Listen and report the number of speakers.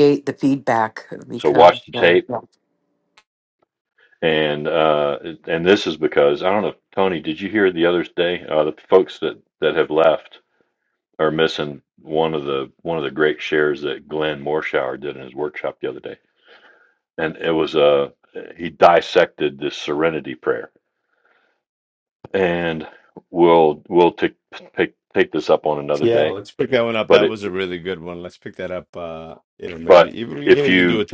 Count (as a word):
three